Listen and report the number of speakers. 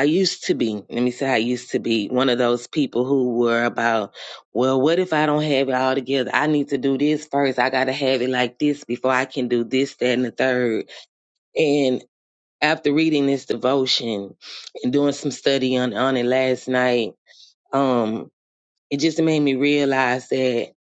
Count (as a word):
one